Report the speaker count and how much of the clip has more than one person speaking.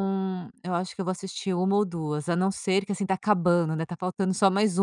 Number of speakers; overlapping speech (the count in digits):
1, no overlap